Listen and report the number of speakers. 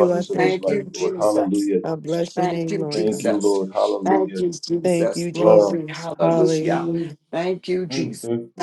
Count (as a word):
three